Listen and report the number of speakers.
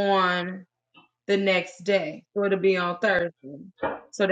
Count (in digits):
1